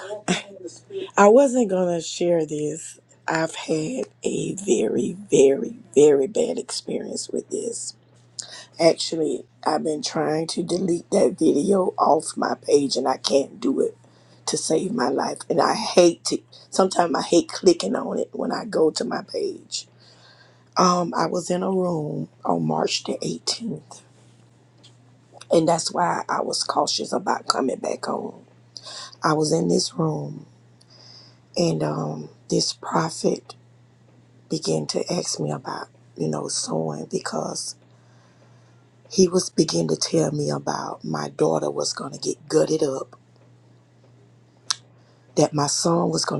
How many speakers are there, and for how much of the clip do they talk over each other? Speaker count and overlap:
one, no overlap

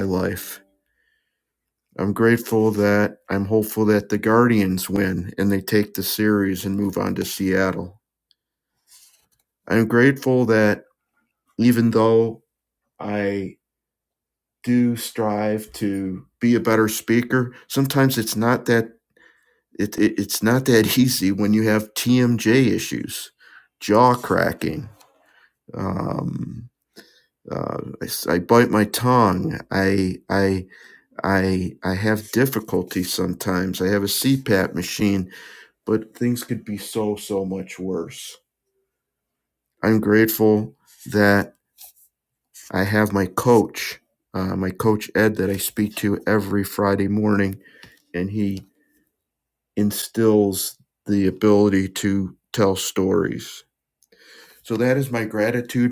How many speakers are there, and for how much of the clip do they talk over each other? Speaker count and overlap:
one, no overlap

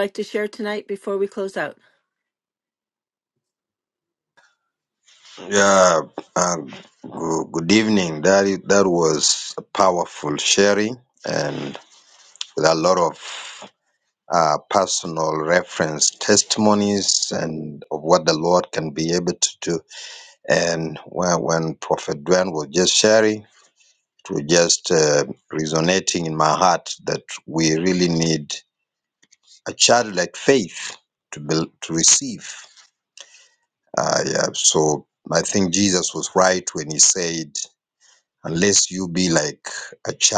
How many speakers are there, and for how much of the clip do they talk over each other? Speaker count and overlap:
two, no overlap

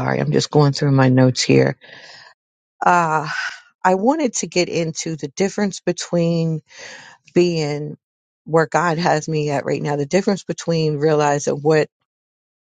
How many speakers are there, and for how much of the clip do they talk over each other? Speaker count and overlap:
one, no overlap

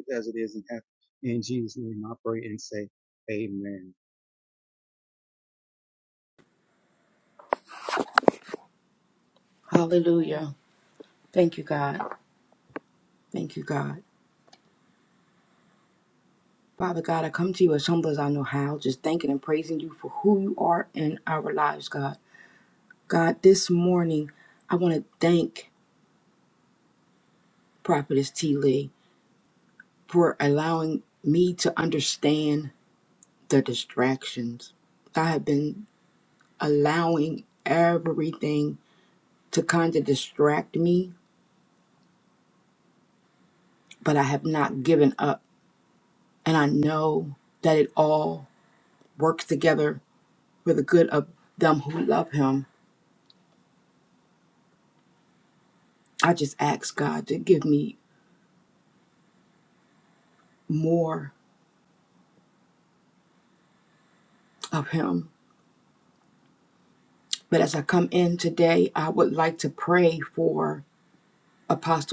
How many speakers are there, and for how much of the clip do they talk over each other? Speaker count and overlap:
two, no overlap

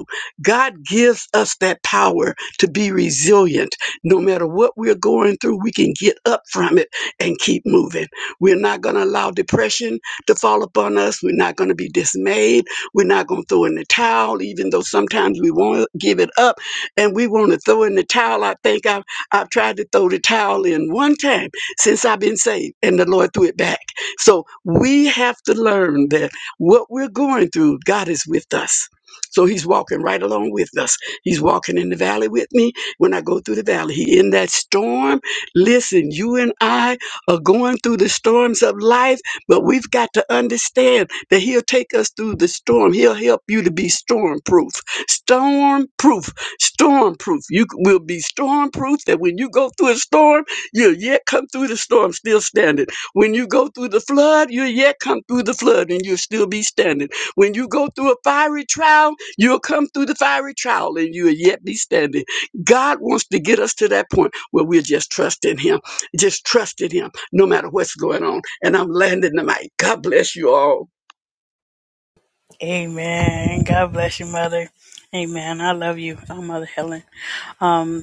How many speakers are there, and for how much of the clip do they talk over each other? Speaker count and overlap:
two, no overlap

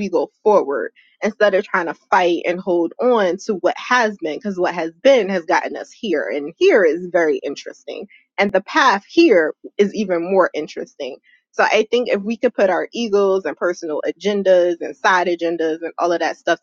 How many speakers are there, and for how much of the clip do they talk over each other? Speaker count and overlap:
one, no overlap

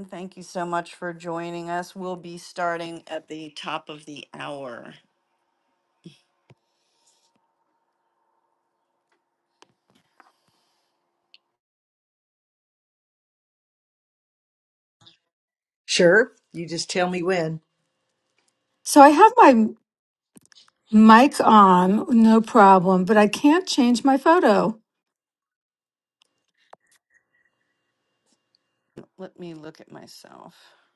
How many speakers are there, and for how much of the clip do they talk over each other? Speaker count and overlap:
three, no overlap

